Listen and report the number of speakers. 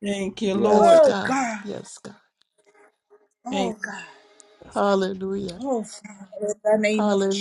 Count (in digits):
3